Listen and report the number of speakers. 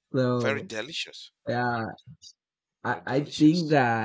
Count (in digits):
2